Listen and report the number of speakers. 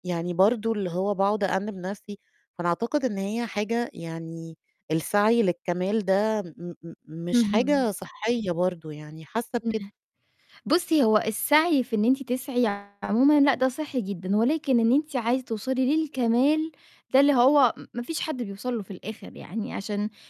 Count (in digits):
2